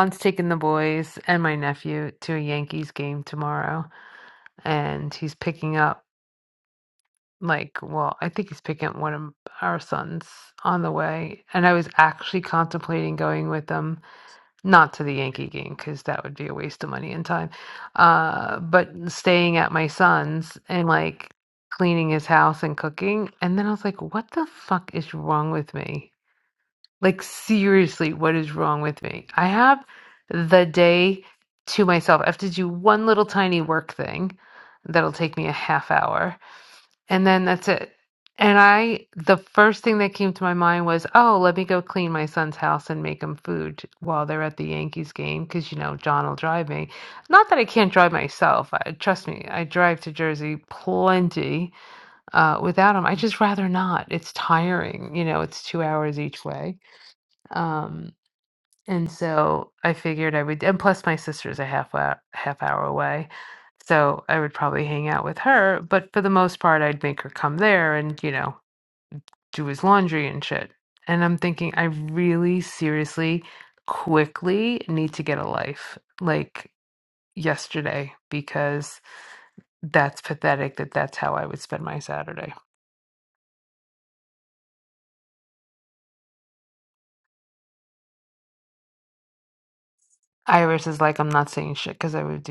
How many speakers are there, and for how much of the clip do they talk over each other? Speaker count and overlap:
1, no overlap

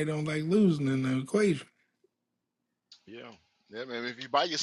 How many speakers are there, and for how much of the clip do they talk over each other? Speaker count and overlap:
2, no overlap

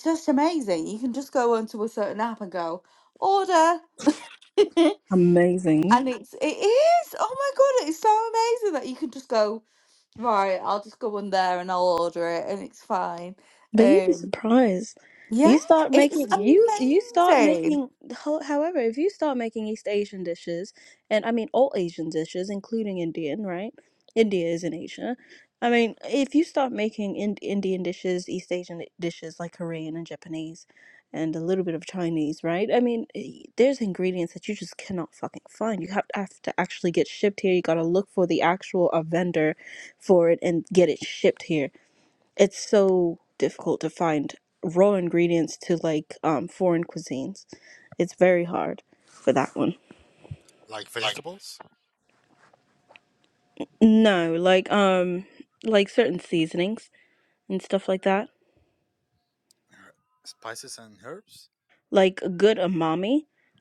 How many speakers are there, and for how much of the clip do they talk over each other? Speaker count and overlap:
3, about 4%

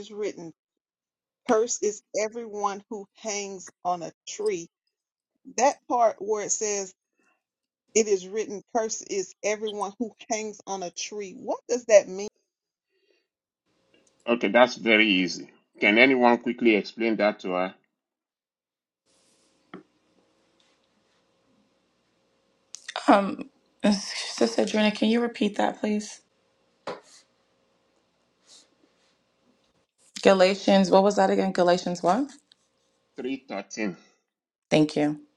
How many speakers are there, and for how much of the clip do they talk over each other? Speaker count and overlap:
3, no overlap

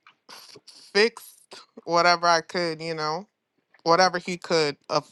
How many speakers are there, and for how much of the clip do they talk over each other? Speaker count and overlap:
1, no overlap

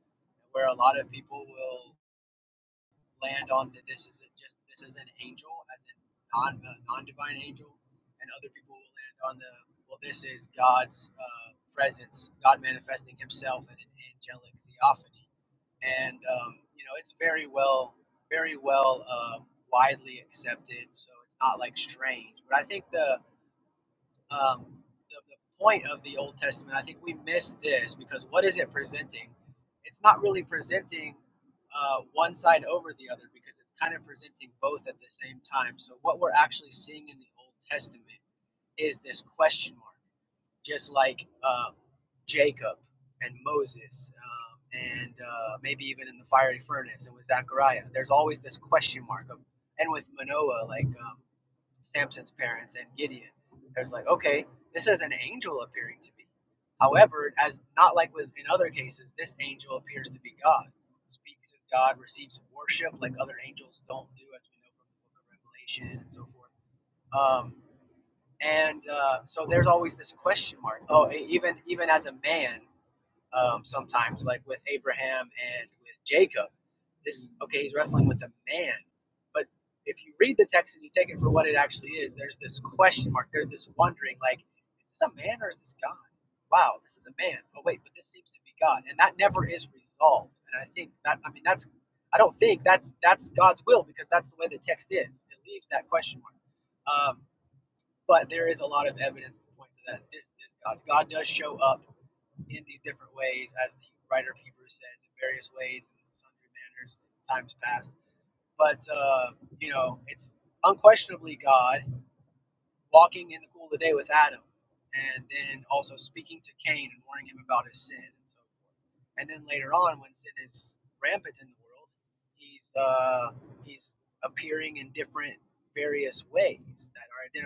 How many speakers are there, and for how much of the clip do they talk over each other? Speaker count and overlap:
1, no overlap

